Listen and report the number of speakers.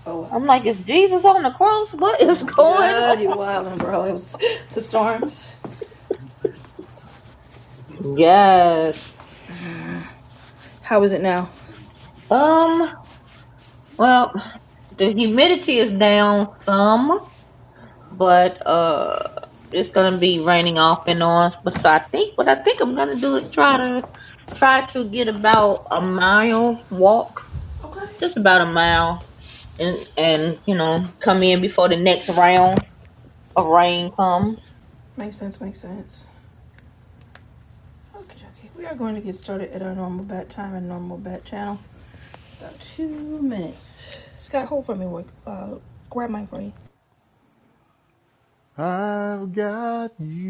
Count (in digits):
3